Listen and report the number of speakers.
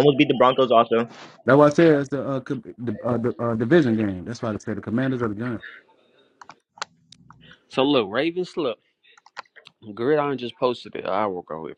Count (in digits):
3